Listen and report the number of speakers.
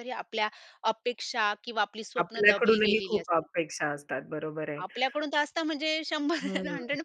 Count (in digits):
2